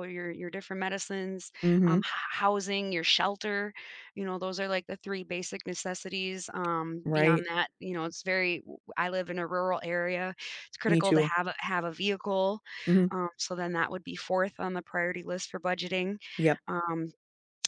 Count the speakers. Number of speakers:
2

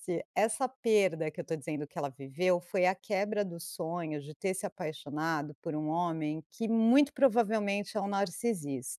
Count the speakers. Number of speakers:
1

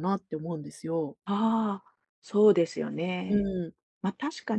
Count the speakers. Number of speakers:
2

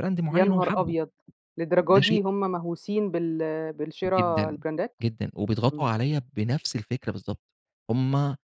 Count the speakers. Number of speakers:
2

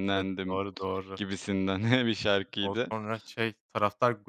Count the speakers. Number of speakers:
2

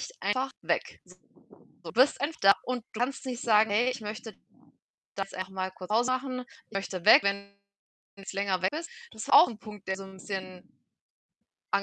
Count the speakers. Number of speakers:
1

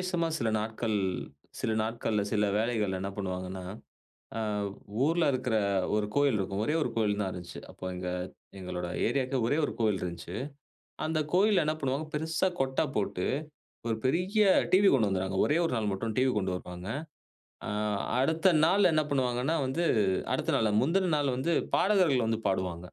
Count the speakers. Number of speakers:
1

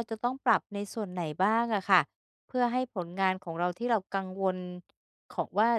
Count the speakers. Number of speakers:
1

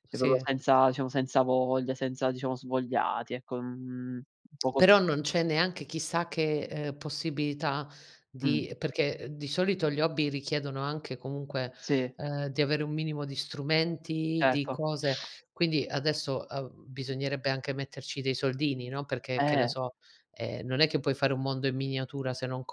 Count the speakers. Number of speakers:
2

